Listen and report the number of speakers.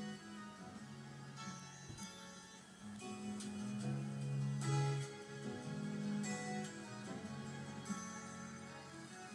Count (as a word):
zero